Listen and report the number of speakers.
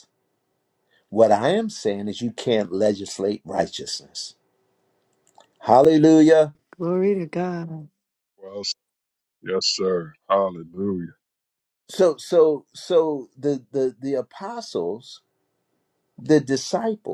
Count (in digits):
3